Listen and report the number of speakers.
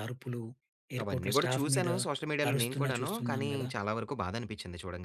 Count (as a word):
two